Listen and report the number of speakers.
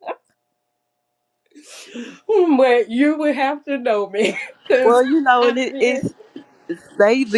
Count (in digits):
2